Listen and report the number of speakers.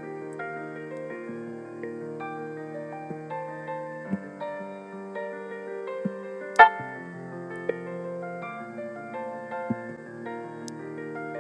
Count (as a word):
zero